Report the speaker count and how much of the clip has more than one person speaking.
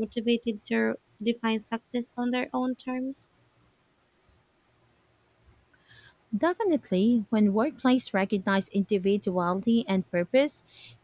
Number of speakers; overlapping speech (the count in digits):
2, no overlap